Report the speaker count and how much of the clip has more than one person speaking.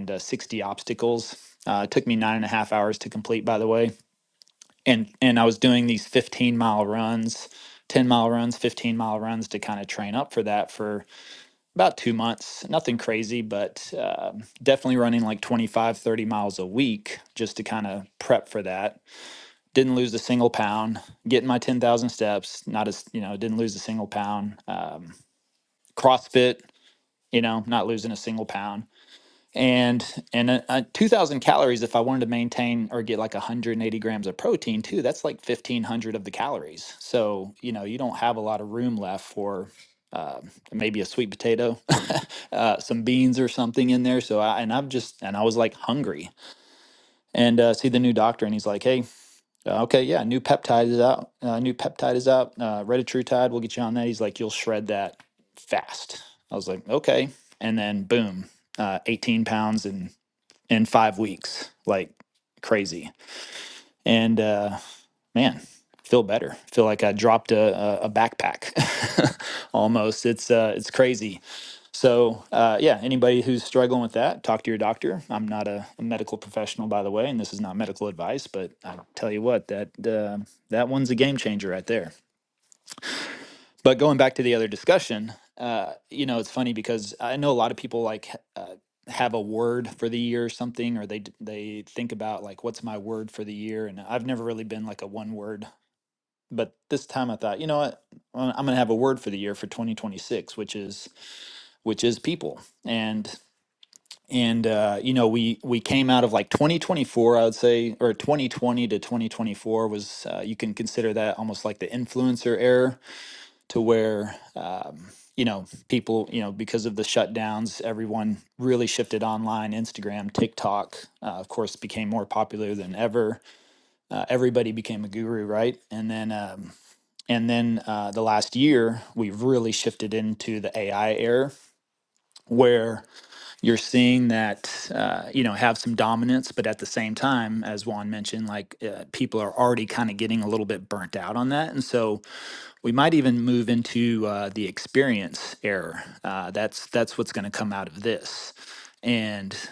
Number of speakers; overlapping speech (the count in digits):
1, no overlap